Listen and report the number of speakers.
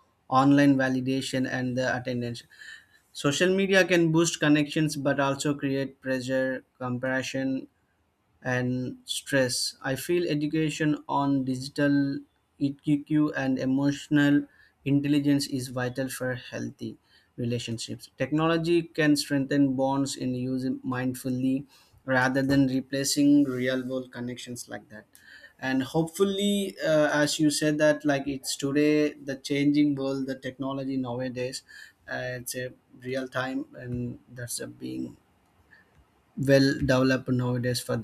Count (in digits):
1